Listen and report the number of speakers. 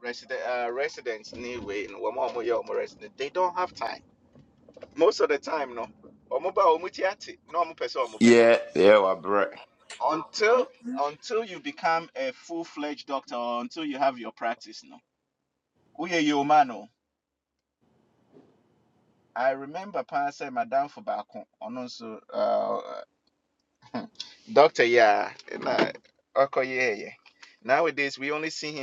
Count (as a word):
two